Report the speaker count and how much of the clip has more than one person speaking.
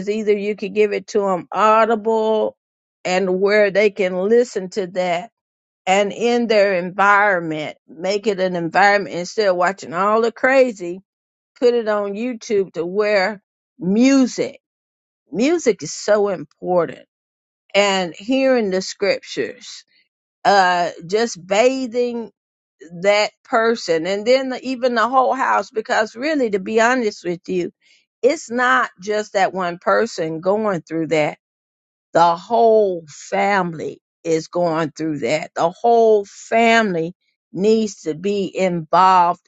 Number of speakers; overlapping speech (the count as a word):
one, no overlap